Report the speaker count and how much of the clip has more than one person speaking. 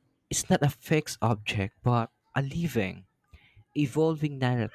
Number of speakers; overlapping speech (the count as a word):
one, no overlap